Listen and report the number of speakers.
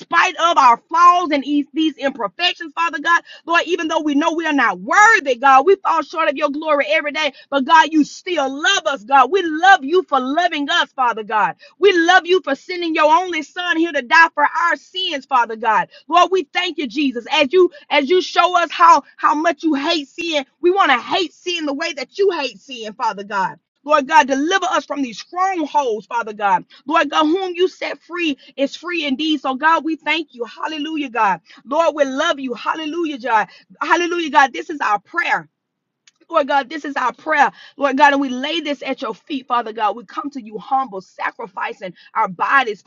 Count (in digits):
1